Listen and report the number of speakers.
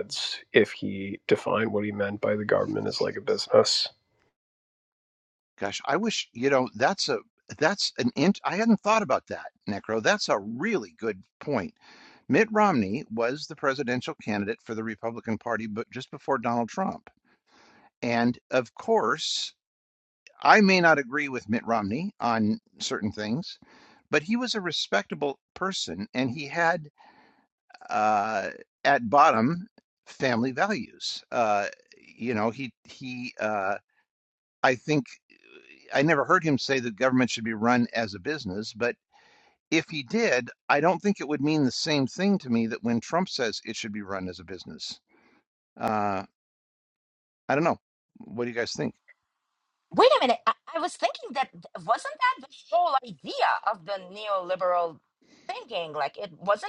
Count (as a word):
three